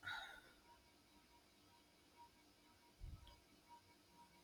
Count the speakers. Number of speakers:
0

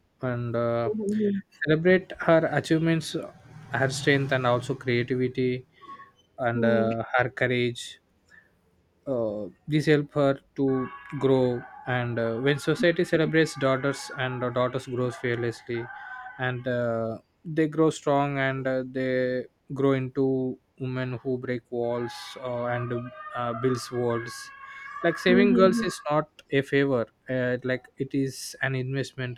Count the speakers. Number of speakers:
2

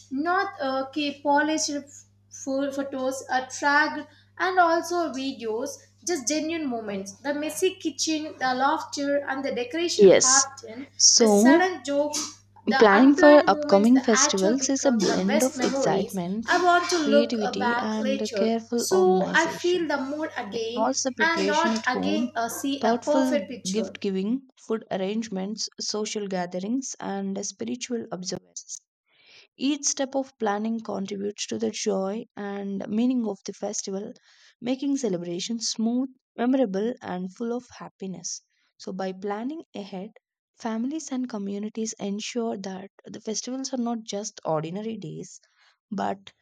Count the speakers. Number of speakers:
2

